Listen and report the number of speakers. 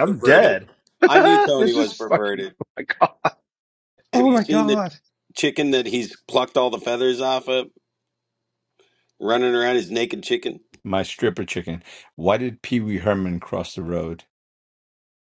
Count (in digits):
3